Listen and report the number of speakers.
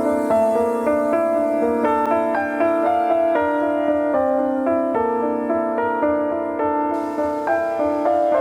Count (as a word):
zero